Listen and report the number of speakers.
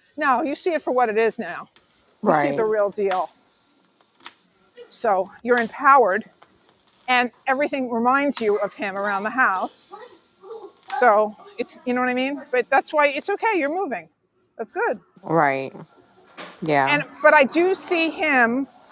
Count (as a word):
two